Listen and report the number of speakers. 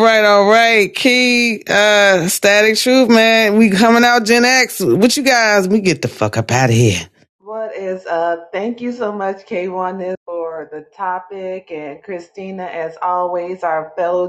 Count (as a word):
two